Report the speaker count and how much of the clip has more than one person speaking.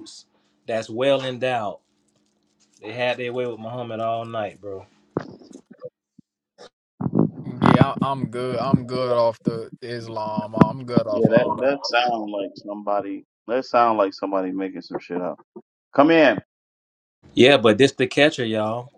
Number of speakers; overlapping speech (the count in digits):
3, about 3%